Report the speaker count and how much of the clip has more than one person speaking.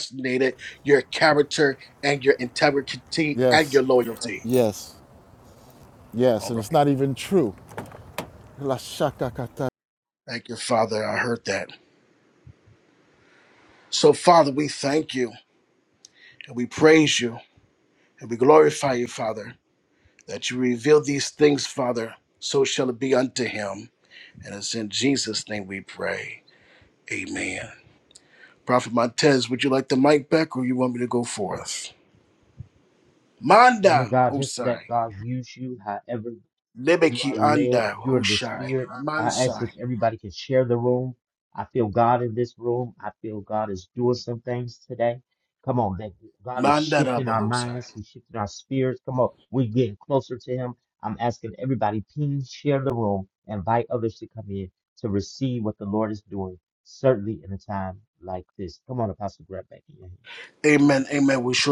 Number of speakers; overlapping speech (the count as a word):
three, about 9%